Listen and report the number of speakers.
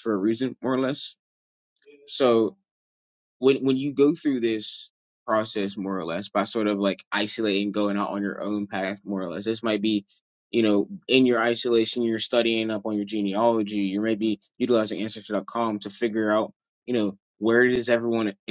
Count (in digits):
1